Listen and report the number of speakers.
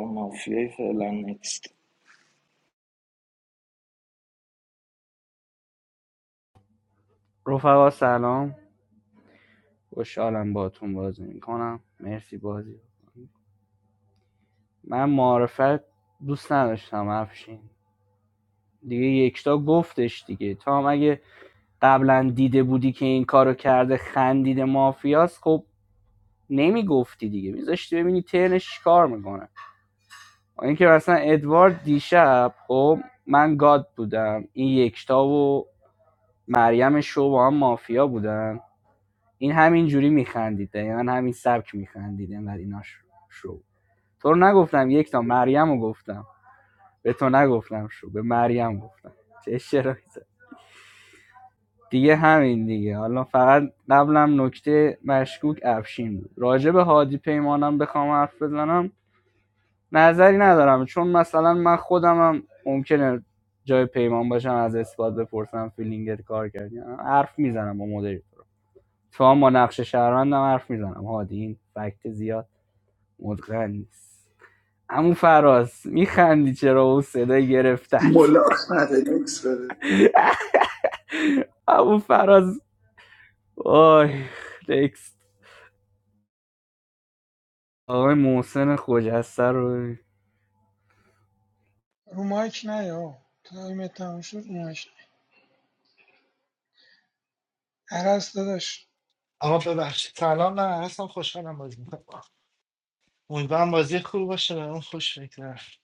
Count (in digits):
5